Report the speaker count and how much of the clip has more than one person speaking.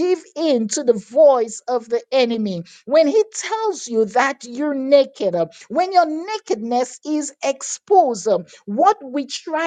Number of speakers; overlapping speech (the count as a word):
one, no overlap